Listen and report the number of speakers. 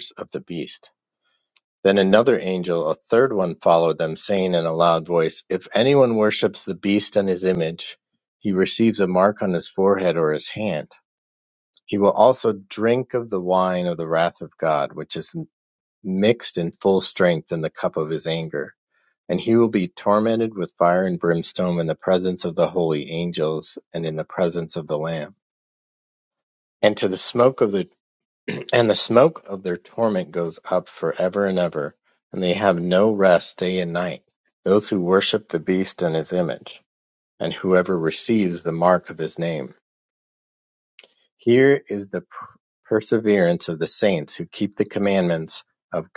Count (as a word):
one